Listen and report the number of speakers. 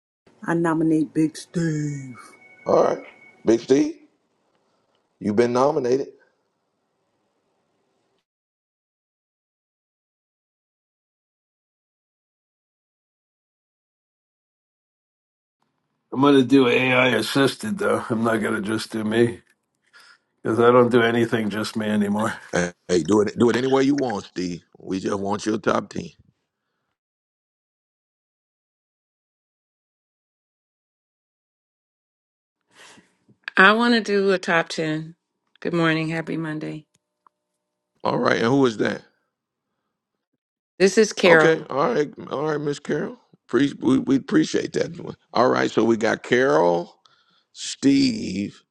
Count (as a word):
four